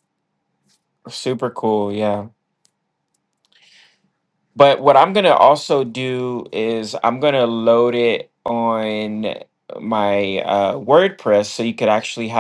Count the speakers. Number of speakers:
1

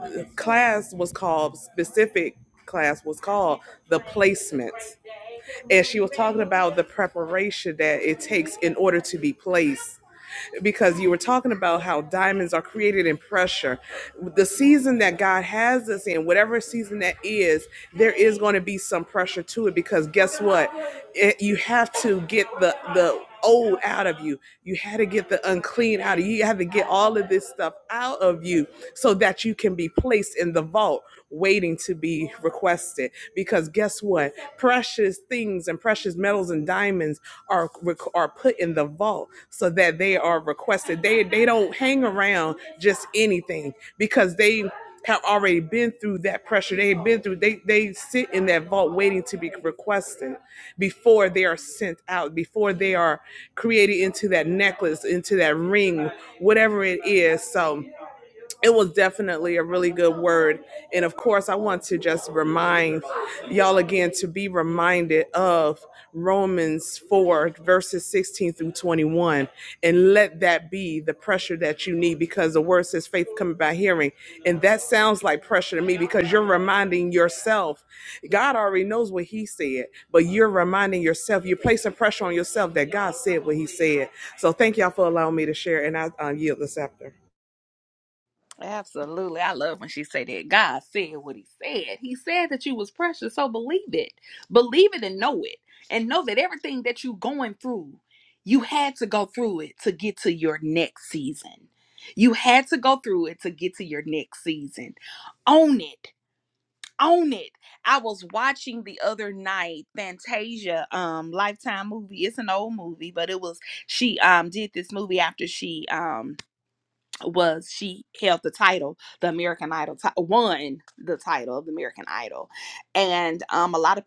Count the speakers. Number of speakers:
2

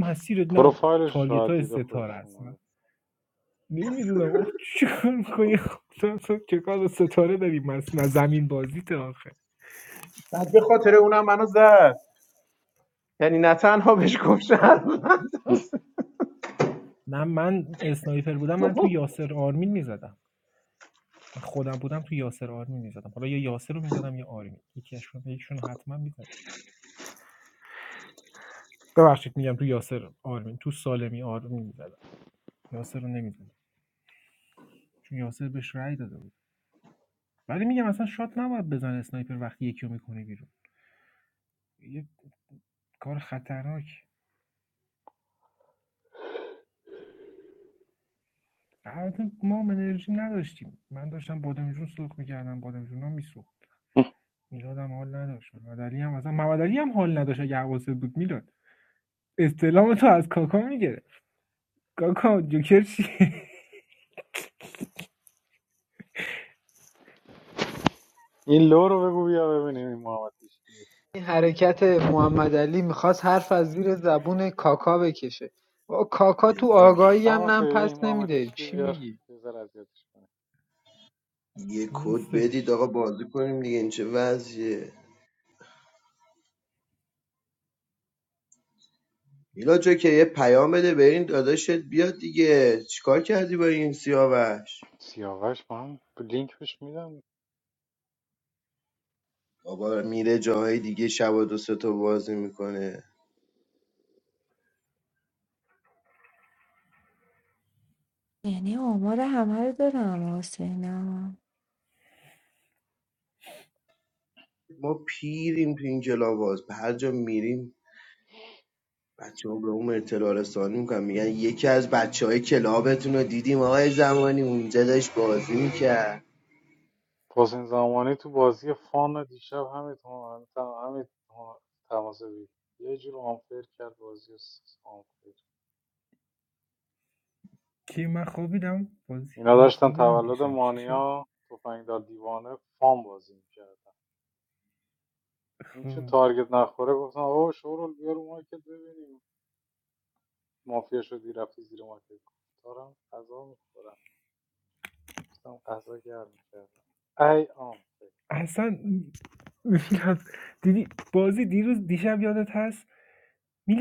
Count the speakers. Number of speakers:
6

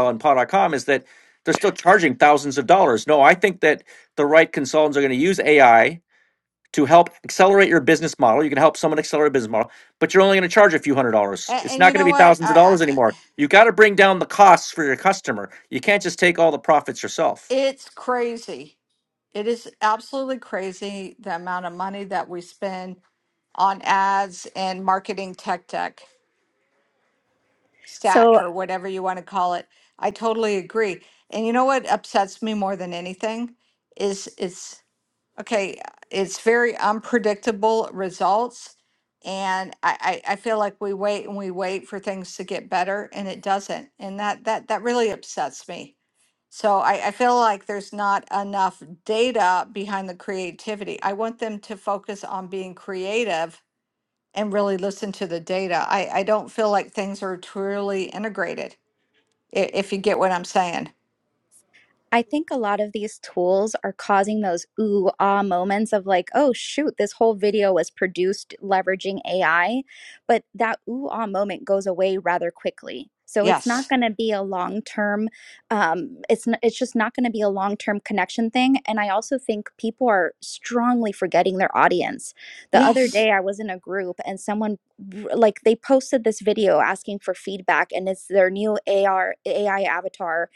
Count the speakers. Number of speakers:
3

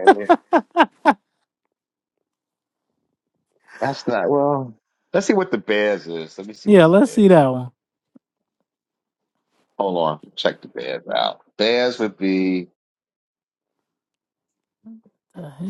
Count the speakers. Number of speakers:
2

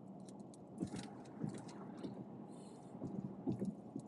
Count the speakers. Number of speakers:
0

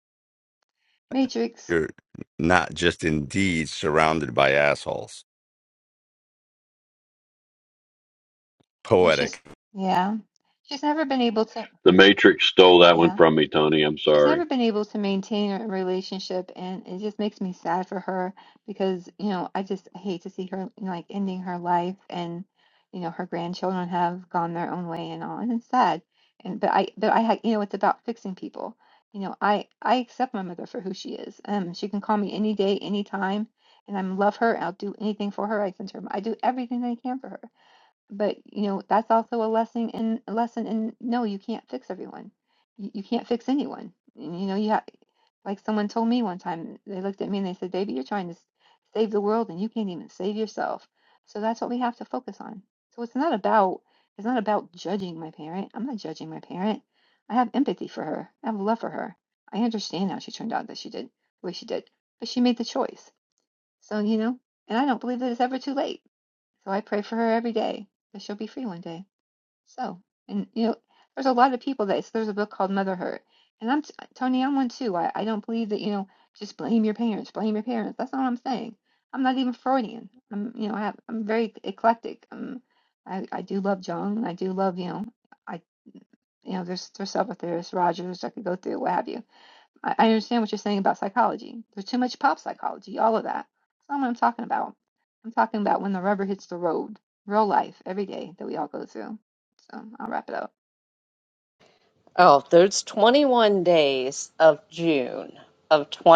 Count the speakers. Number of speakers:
4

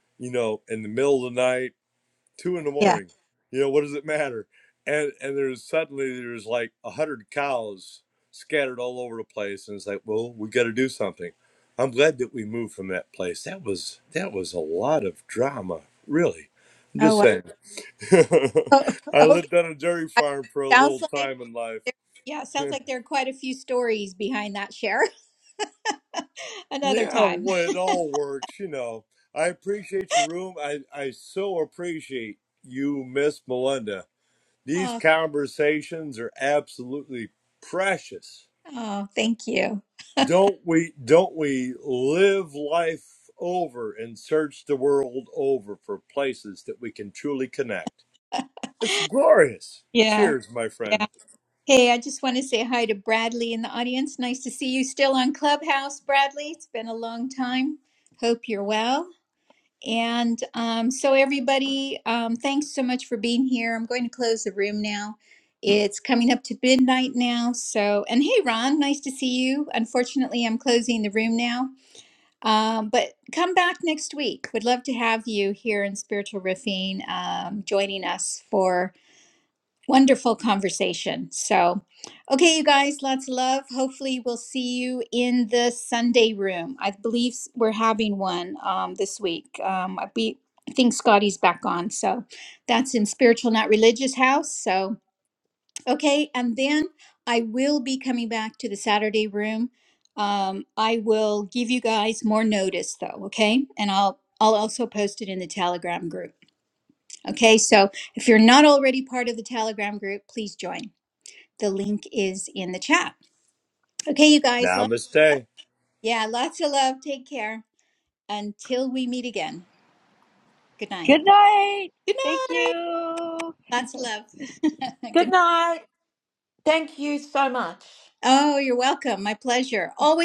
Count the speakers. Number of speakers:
4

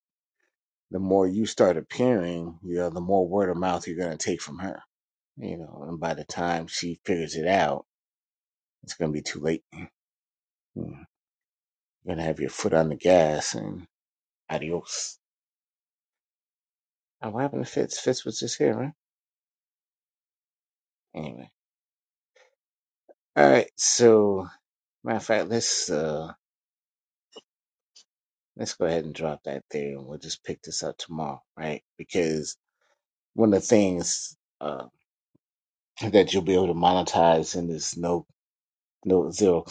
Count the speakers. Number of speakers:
1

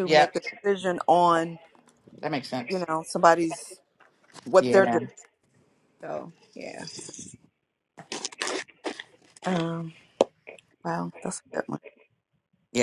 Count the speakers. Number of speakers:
2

